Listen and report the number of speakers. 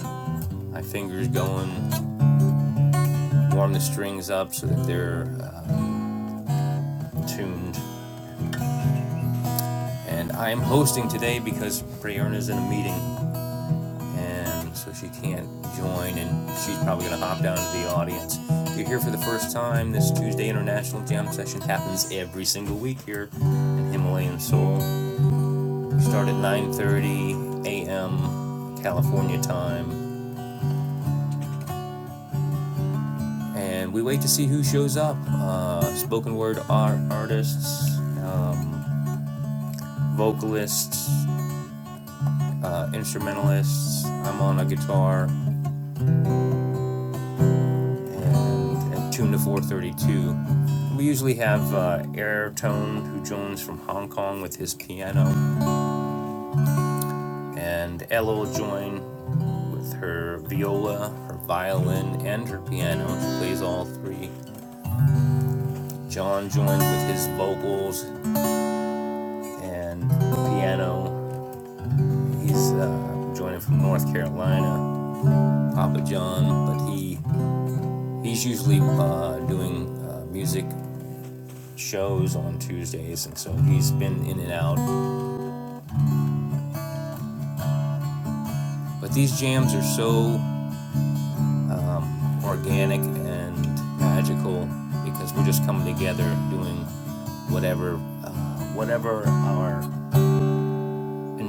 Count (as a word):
one